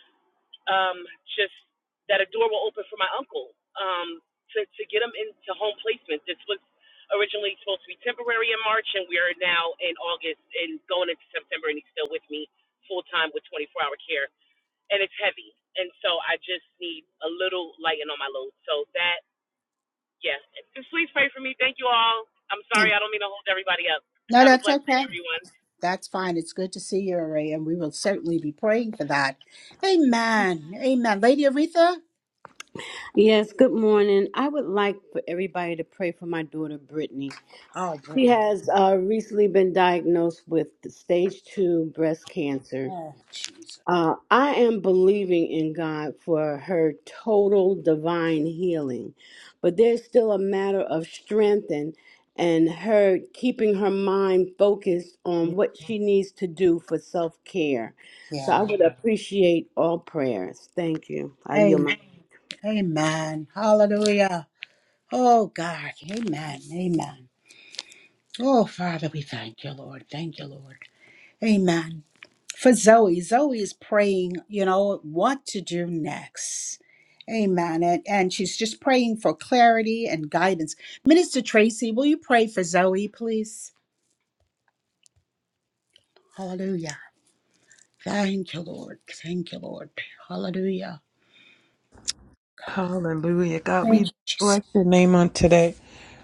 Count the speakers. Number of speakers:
four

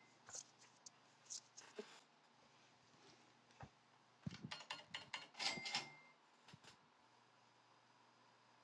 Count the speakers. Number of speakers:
zero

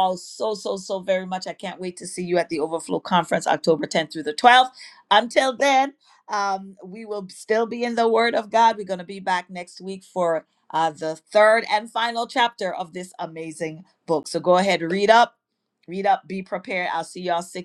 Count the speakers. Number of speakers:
one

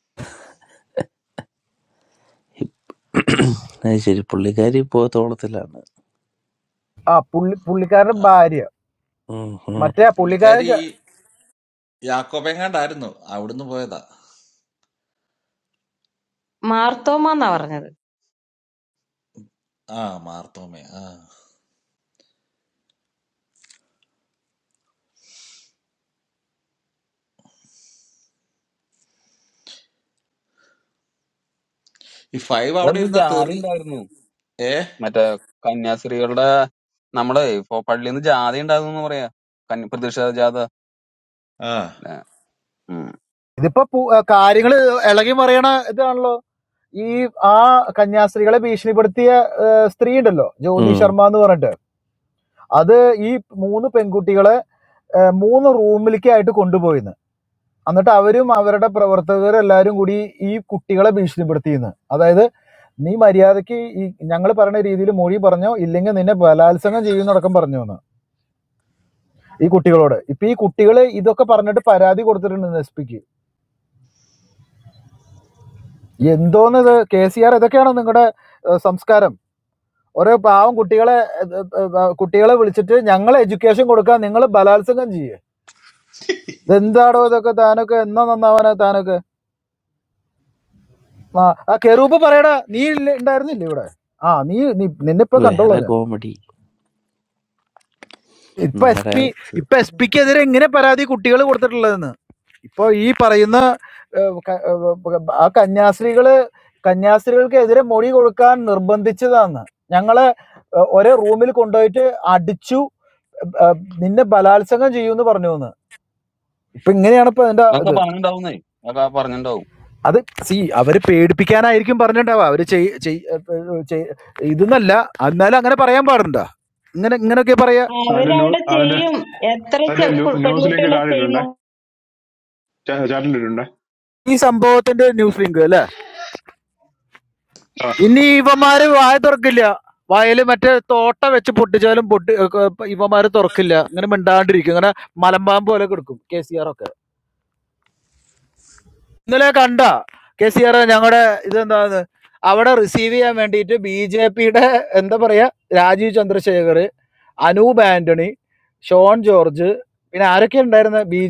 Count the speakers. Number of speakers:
six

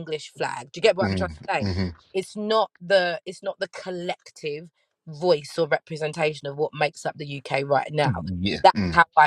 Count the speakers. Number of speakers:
two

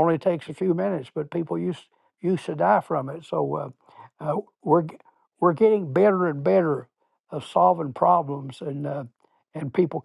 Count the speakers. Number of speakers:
one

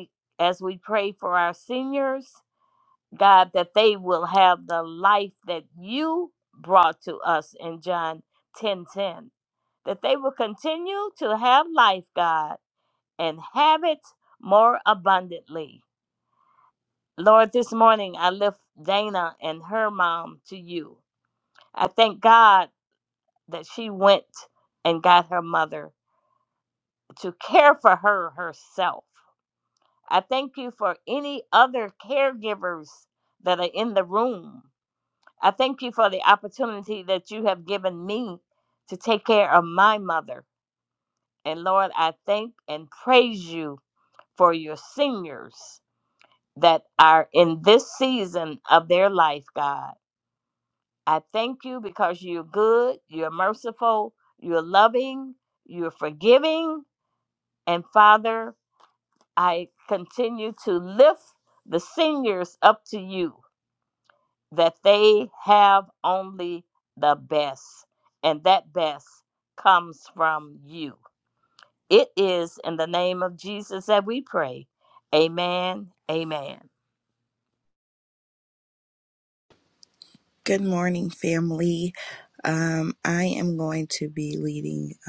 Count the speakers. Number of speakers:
two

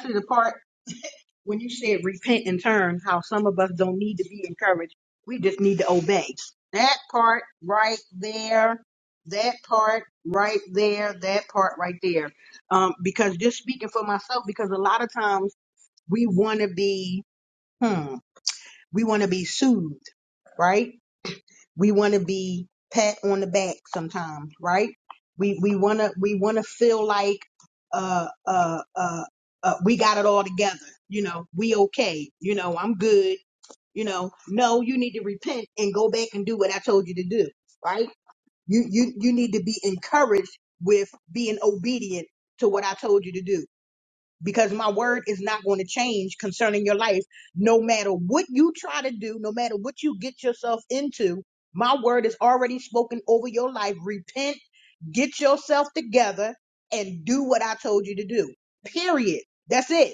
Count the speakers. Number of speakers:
one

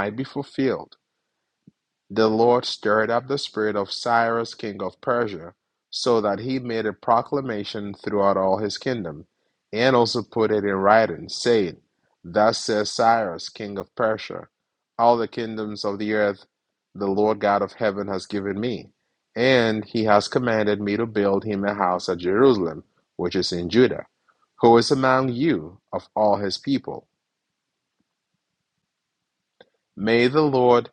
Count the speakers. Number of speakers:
one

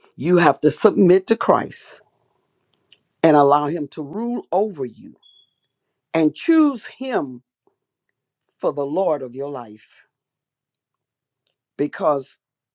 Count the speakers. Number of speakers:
one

